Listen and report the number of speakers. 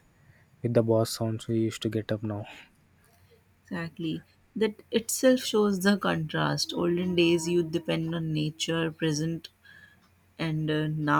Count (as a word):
two